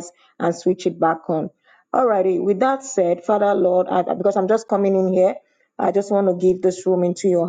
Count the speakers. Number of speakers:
one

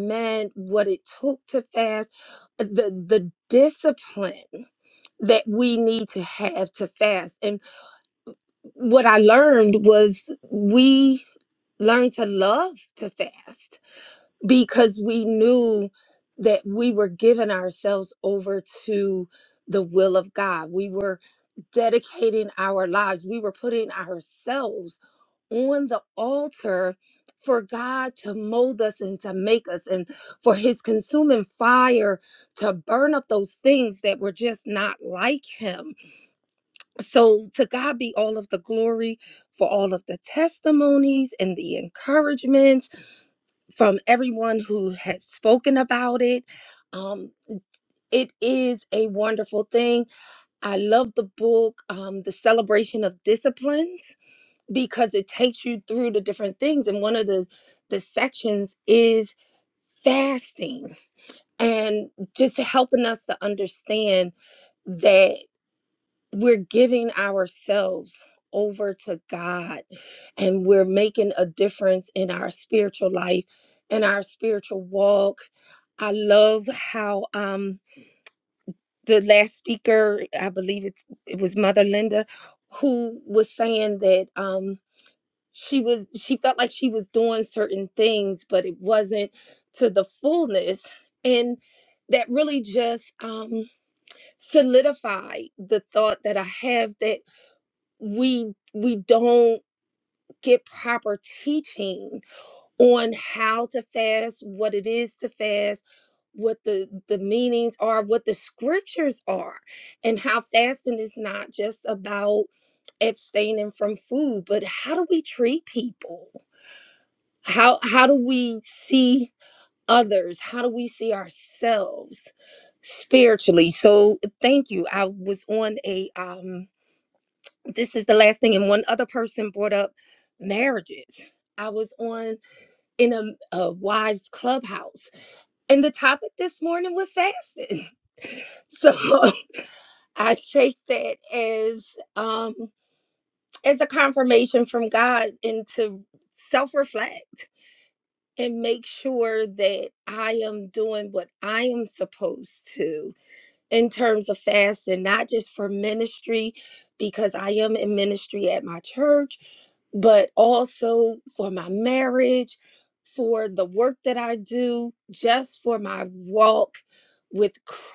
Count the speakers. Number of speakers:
one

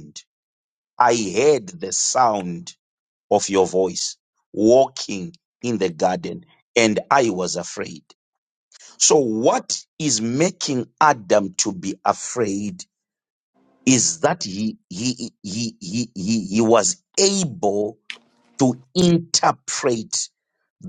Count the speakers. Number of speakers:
one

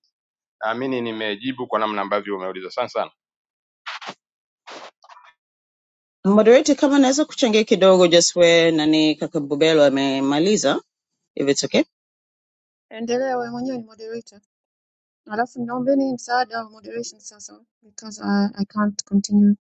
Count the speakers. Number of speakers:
three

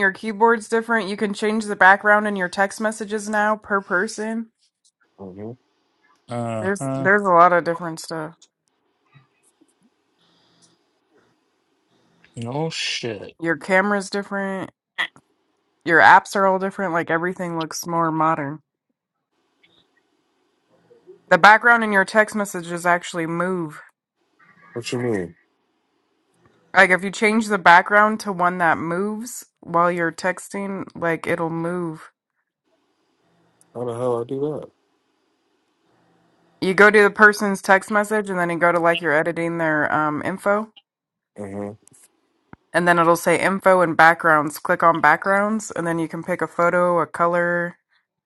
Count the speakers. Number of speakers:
three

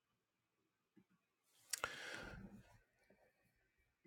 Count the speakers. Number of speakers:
zero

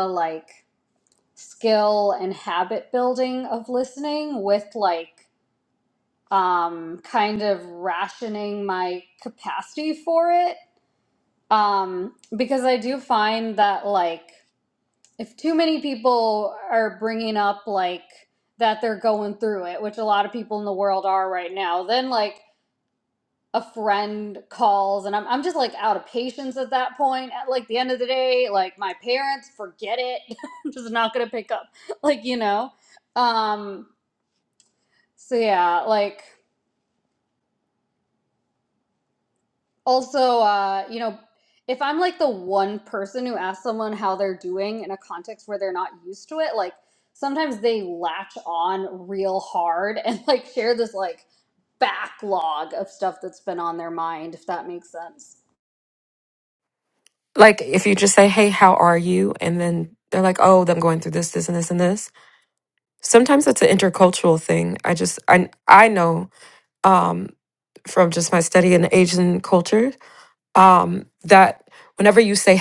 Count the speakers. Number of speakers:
two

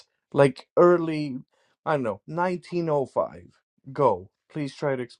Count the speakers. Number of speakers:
one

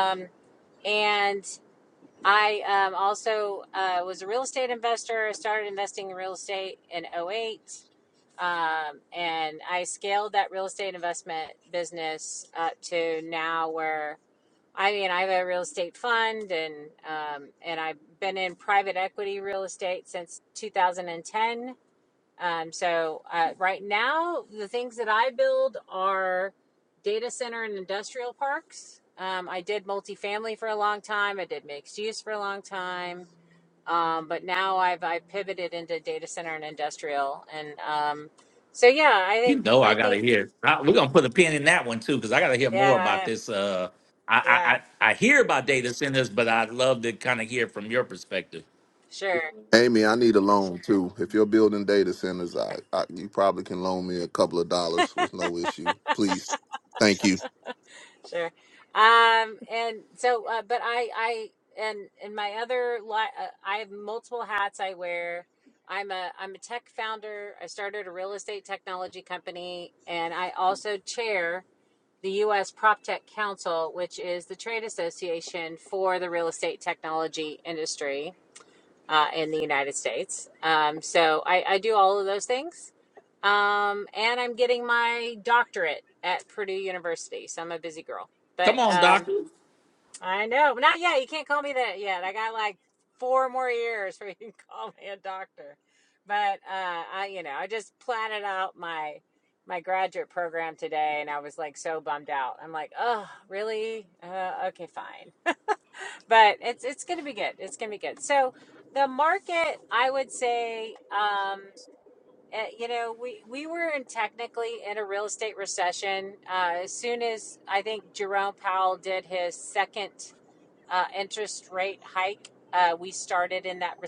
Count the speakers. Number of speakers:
three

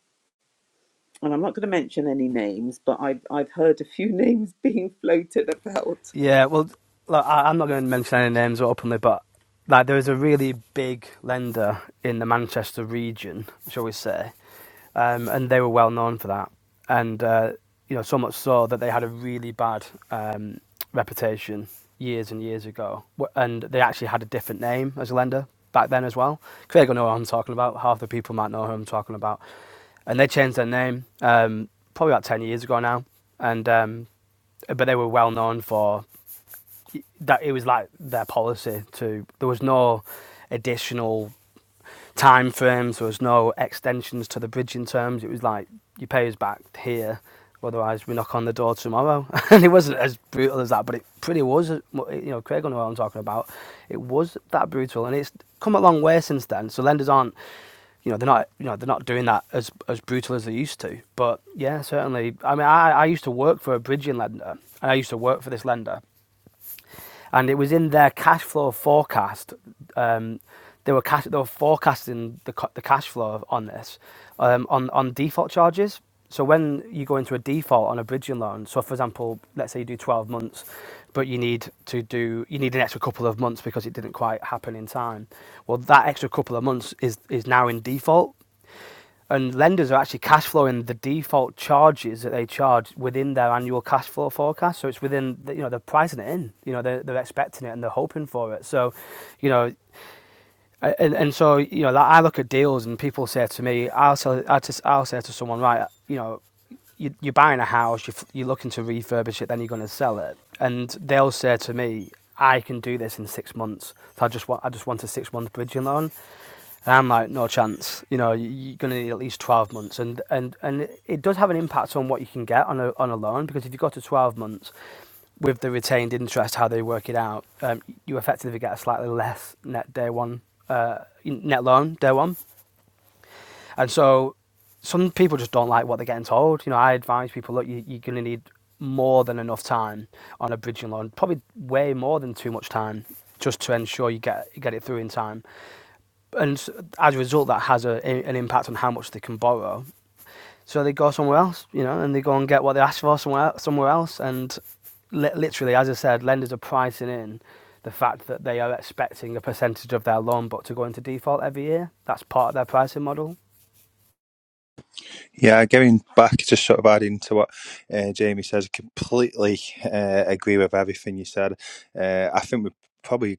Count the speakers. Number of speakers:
three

